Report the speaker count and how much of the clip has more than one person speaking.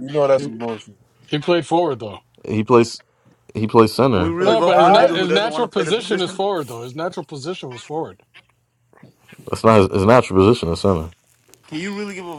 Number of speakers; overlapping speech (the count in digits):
4, about 20%